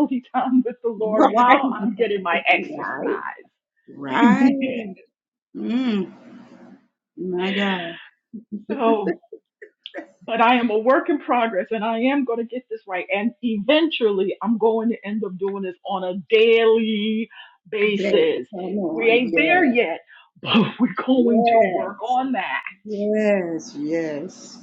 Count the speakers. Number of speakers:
2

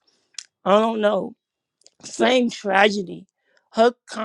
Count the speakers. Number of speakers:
1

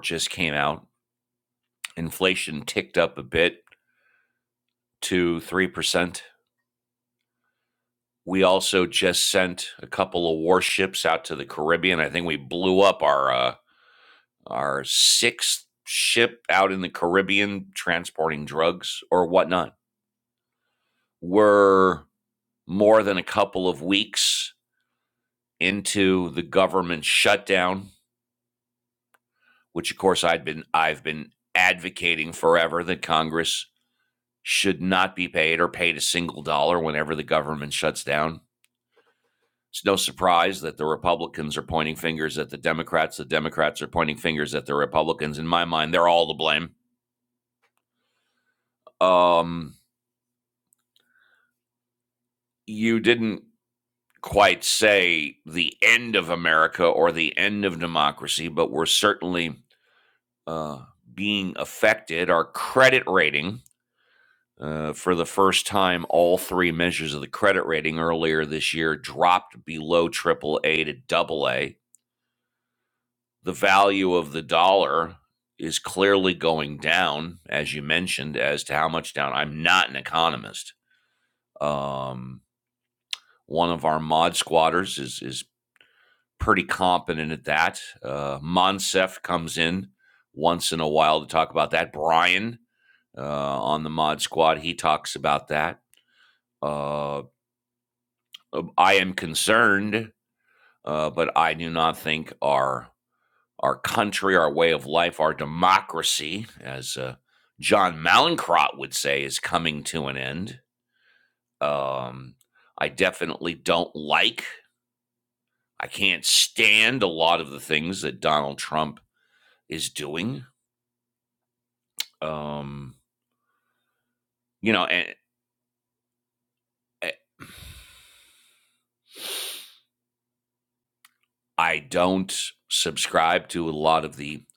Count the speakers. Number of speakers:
1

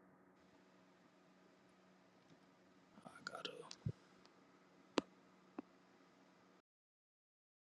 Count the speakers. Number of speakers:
0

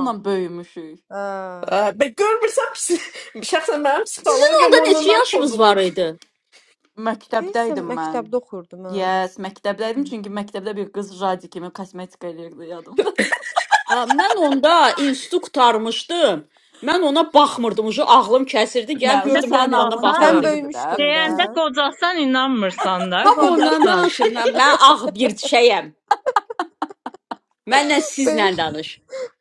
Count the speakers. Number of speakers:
5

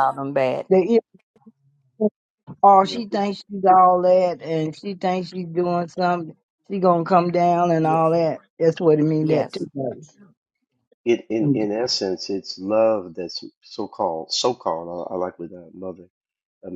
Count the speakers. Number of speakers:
3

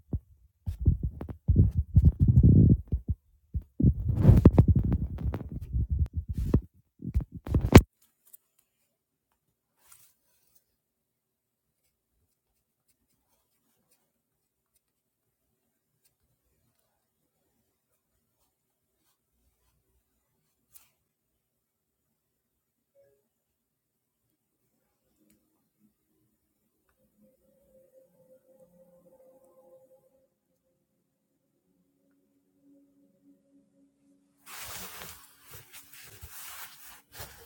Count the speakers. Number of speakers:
0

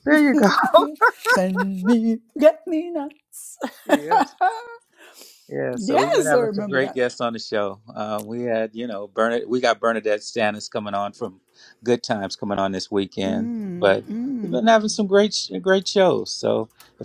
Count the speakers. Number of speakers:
2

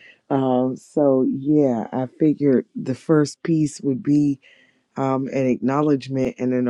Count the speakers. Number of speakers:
1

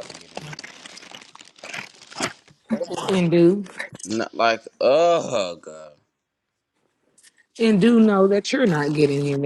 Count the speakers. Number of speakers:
2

